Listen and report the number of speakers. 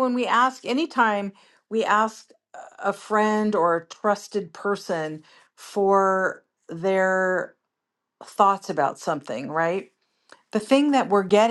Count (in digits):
1